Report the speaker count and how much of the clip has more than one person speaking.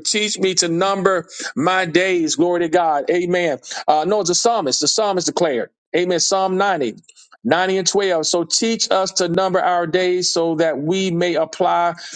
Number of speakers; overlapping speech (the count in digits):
1, no overlap